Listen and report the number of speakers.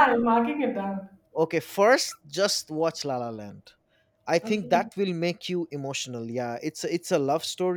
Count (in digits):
2